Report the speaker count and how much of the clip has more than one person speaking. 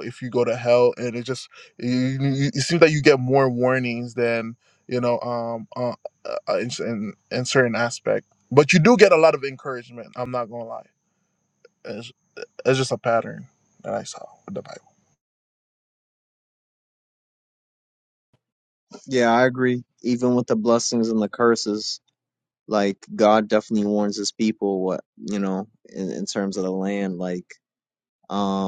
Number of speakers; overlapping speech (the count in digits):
2, no overlap